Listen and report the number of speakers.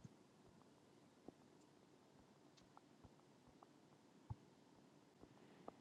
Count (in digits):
0